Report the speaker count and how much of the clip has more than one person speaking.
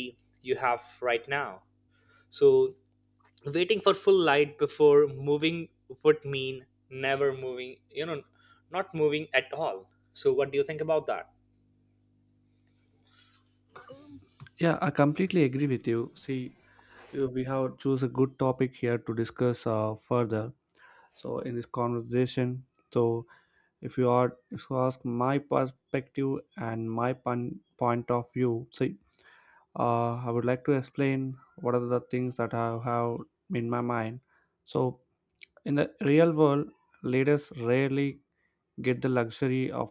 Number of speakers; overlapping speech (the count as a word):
two, no overlap